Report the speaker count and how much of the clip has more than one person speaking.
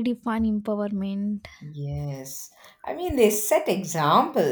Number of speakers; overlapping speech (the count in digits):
2, no overlap